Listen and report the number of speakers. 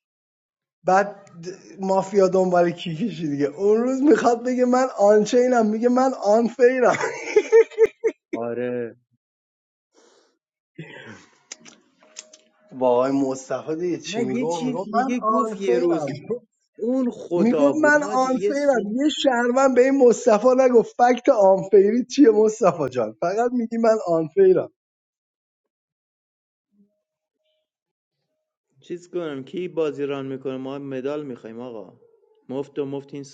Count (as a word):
two